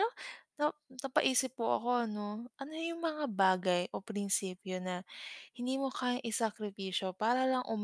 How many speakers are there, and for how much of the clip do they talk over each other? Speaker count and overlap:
1, no overlap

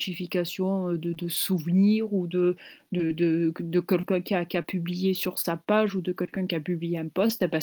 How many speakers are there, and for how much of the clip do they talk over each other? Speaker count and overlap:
1, no overlap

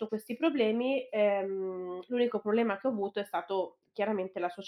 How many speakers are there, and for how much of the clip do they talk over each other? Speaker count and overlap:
1, no overlap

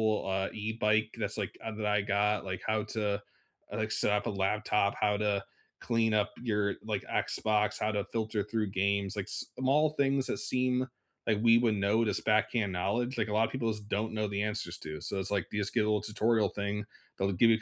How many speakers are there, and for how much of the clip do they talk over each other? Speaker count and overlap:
1, no overlap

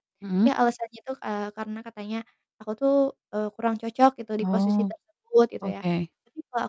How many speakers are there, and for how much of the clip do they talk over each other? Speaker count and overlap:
2, about 12%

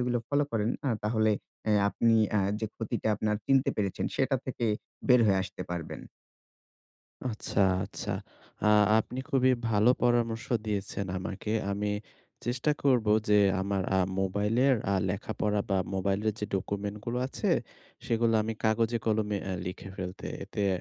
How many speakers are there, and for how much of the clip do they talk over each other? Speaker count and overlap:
2, no overlap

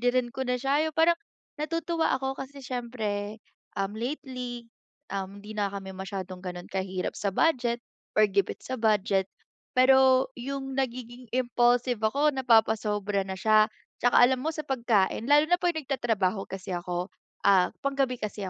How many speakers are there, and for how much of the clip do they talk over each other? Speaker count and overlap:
1, no overlap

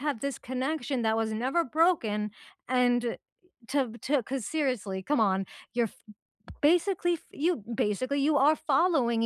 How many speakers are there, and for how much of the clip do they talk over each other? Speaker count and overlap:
1, no overlap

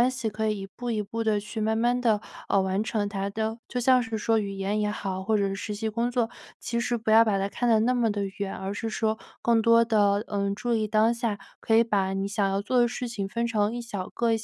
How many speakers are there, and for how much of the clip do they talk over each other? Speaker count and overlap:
1, no overlap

